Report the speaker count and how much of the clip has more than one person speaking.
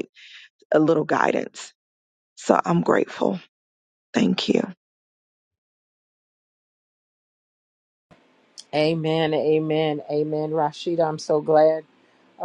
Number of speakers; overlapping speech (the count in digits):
2, no overlap